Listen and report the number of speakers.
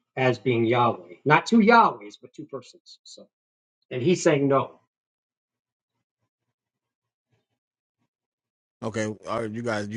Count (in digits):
2